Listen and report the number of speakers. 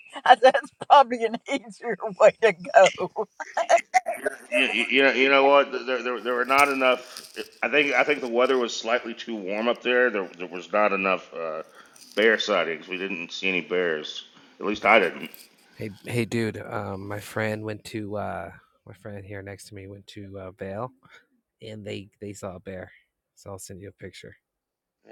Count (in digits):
3